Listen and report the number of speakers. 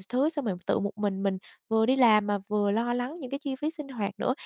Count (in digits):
1